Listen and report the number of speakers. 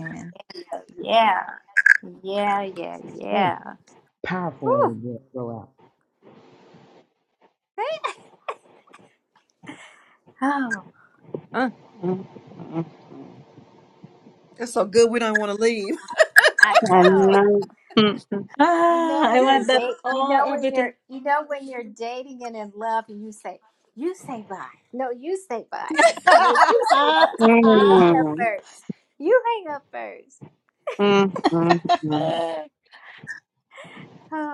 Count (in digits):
5